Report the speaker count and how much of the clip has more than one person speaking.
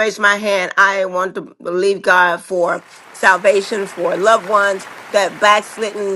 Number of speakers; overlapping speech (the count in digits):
1, no overlap